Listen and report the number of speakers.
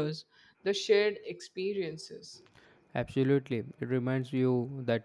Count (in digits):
2